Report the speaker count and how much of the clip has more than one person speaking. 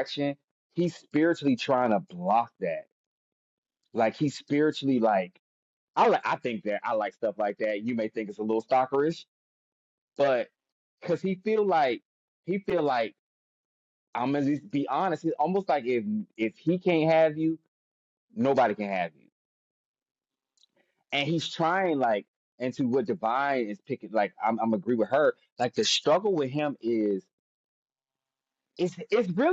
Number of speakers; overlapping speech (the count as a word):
one, no overlap